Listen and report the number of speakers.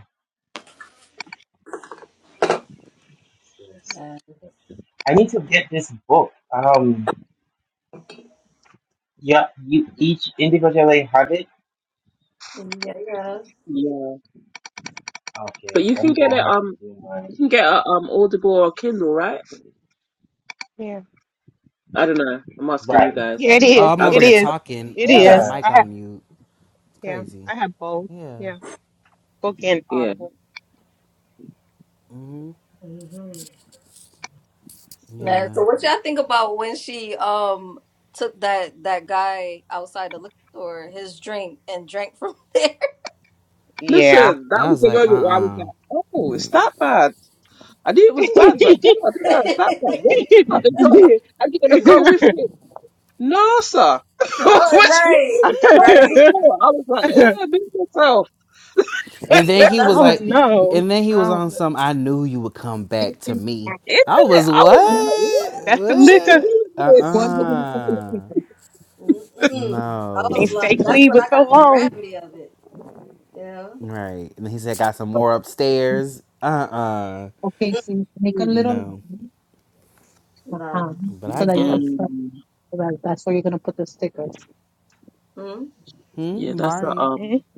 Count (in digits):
6